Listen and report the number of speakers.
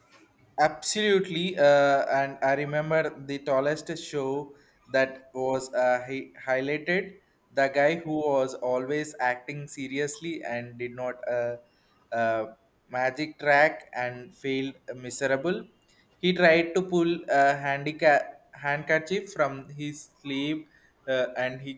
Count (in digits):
1